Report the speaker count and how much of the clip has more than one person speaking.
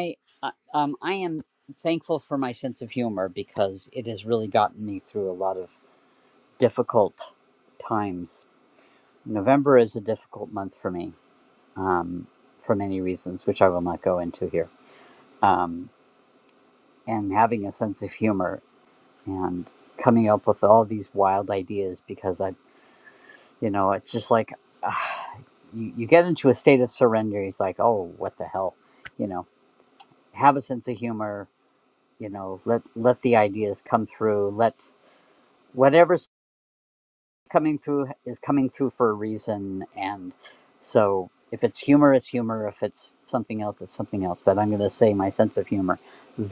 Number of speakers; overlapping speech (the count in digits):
1, no overlap